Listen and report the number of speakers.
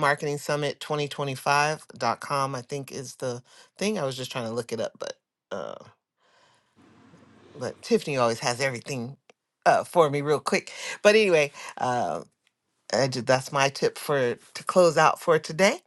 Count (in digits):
1